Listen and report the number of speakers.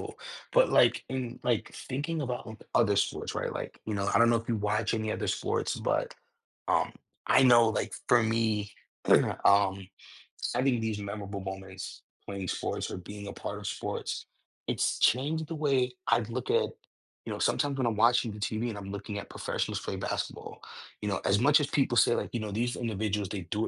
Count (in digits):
1